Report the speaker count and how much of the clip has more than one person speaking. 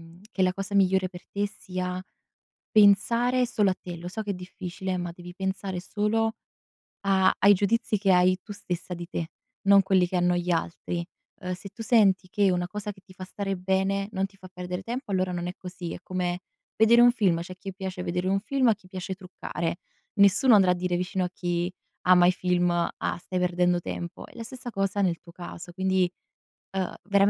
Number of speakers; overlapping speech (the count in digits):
1, no overlap